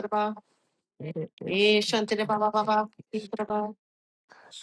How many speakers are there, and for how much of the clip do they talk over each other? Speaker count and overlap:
two, about 33%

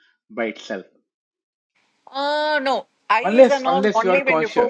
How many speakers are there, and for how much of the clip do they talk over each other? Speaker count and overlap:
two, about 32%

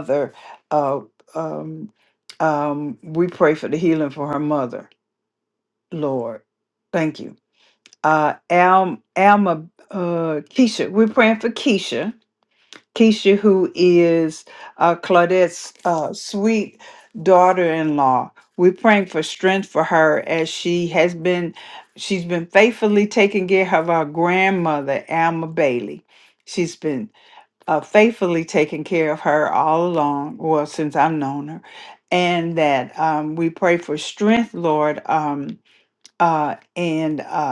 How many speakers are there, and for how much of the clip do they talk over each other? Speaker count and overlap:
one, no overlap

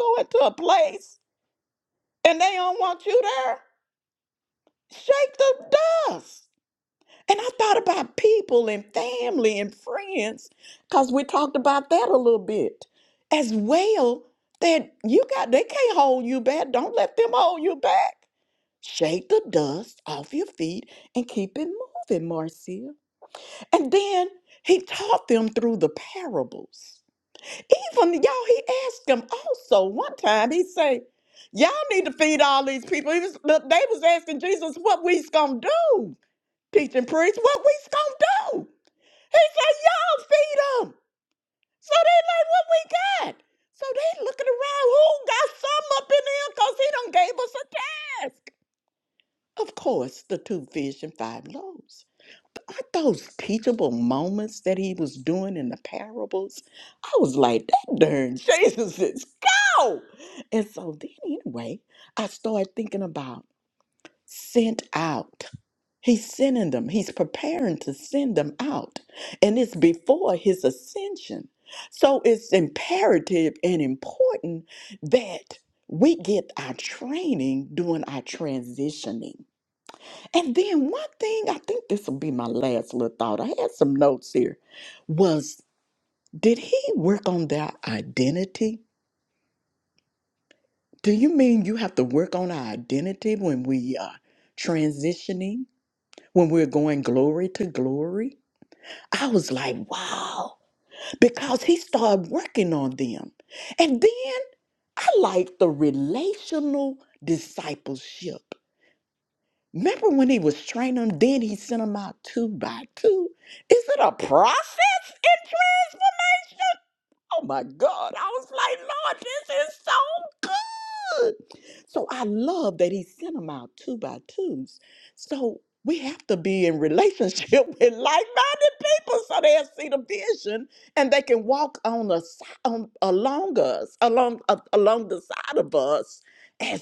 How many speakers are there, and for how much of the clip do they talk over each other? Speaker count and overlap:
one, no overlap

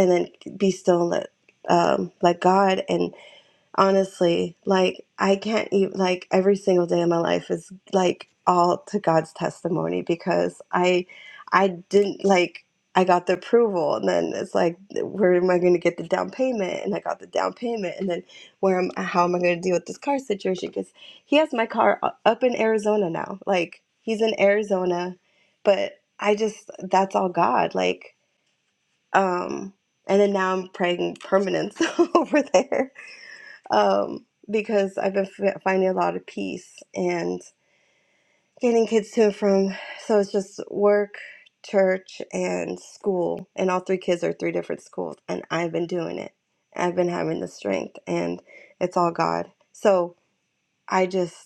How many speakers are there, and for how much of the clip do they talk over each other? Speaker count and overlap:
one, no overlap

